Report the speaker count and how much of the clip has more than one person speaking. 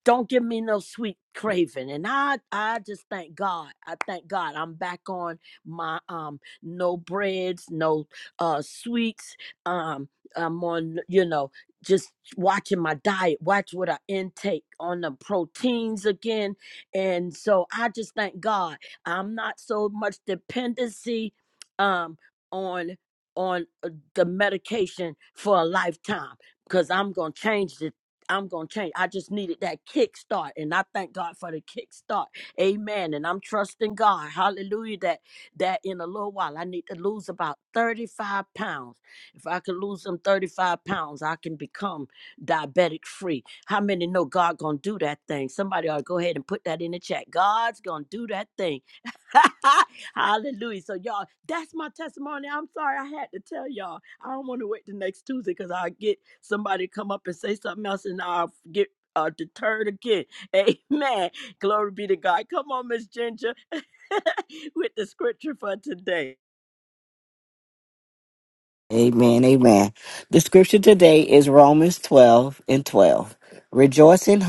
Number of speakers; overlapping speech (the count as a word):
two, no overlap